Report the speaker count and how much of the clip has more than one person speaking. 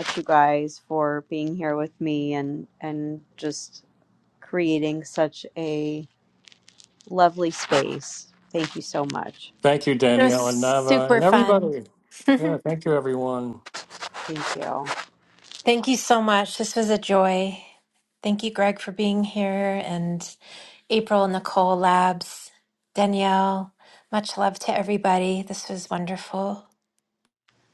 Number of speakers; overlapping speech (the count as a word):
three, about 4%